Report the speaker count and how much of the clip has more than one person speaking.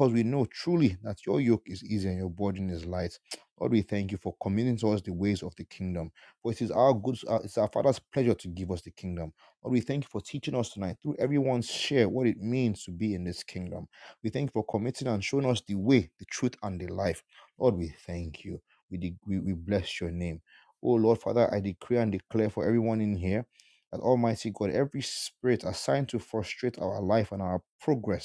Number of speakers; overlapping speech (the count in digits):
1, no overlap